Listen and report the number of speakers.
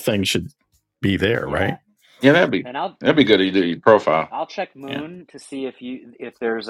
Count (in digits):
3